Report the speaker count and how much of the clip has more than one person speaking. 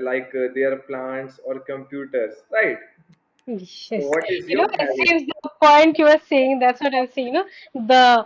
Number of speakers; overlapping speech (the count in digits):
2, about 8%